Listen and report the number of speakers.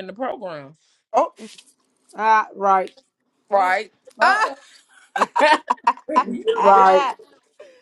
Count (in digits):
3